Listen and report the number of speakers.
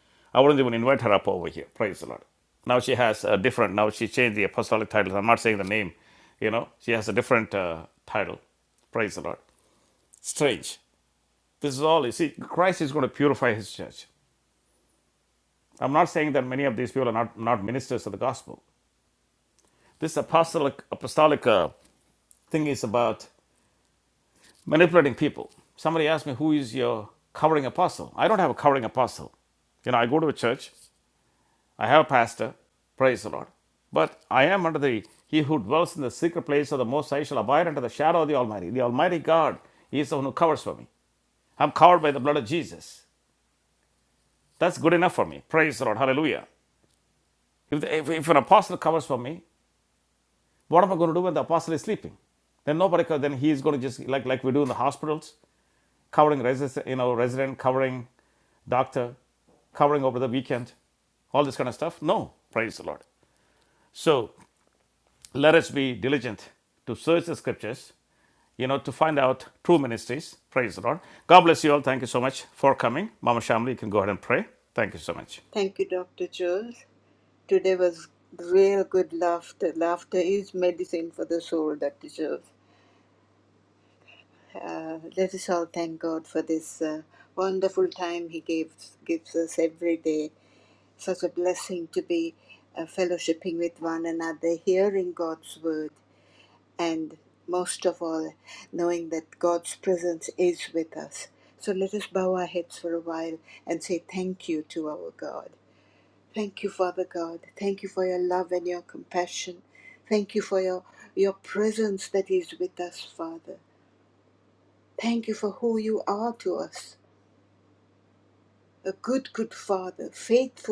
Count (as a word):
two